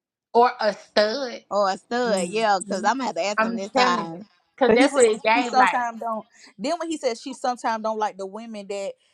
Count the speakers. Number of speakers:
3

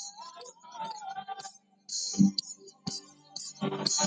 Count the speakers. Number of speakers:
0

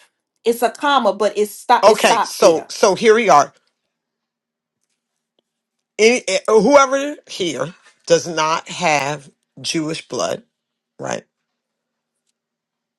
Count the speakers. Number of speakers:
2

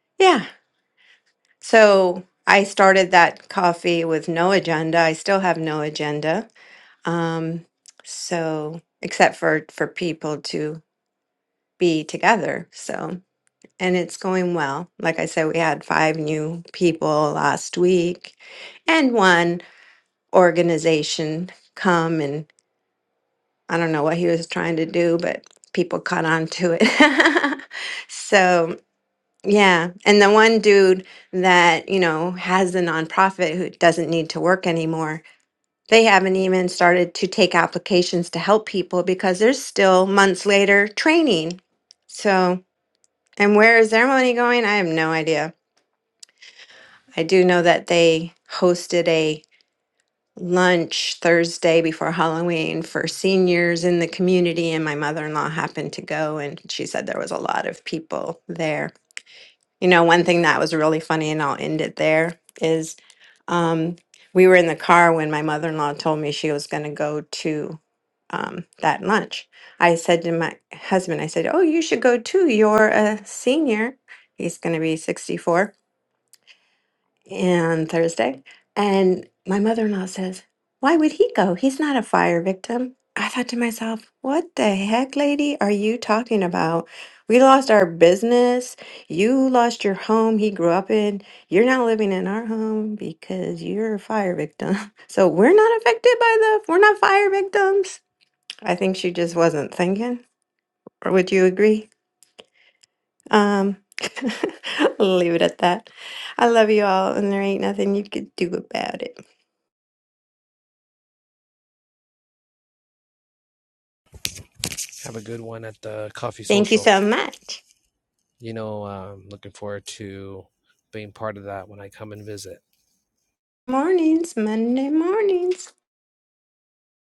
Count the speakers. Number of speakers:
2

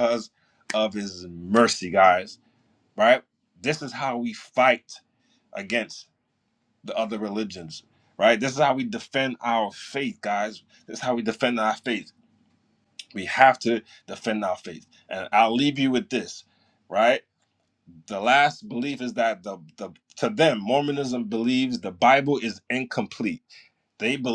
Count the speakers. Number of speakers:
1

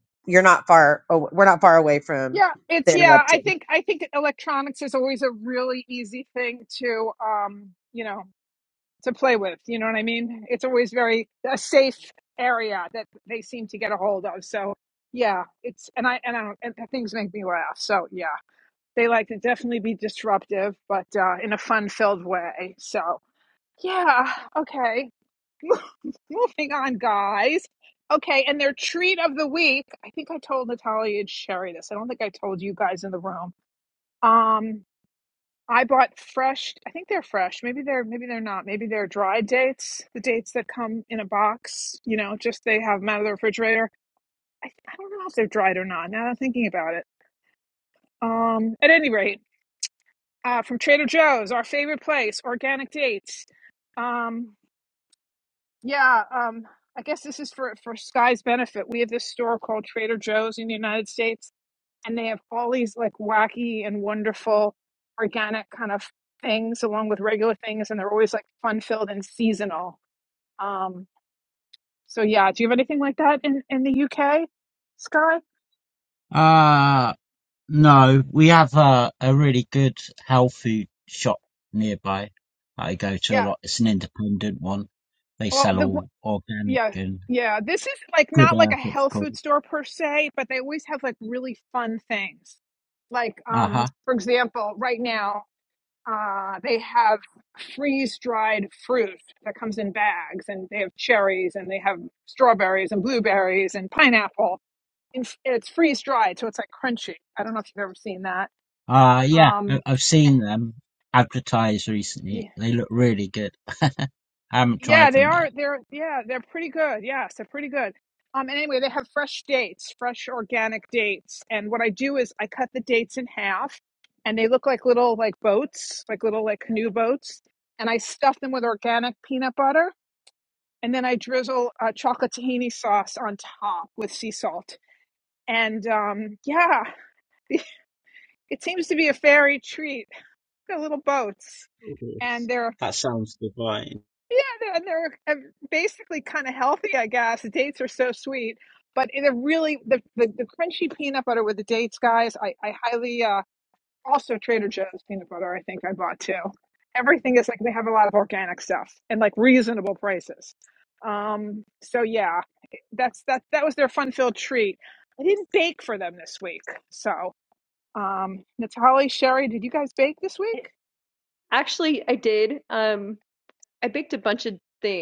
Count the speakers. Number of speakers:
4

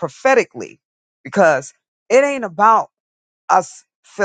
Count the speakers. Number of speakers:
1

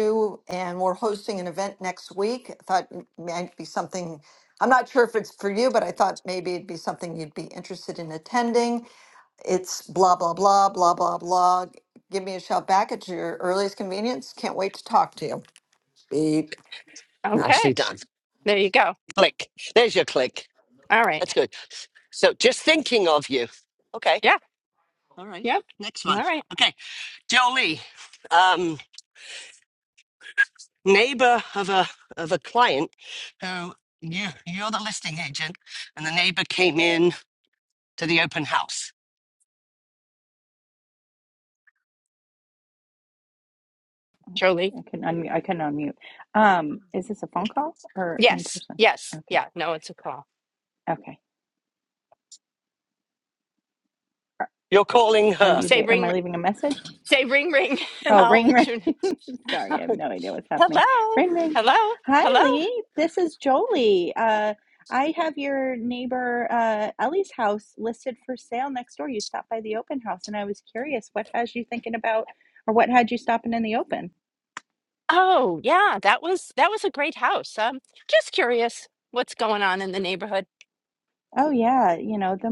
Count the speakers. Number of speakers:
4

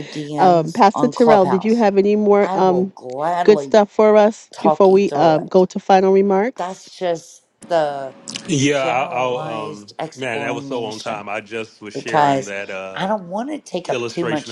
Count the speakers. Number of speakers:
3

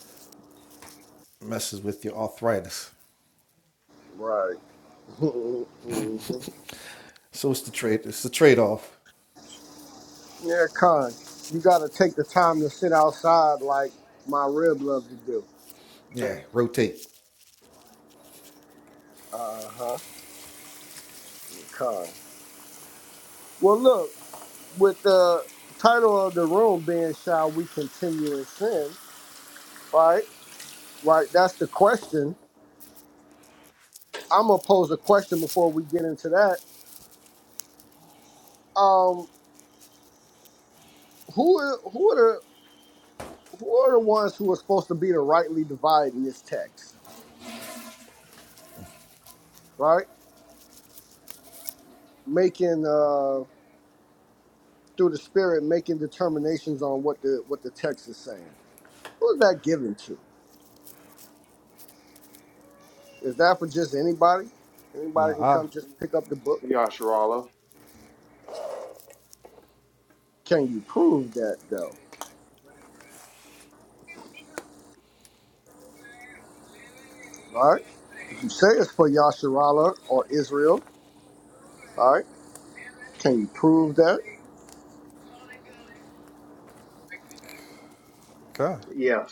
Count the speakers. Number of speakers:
3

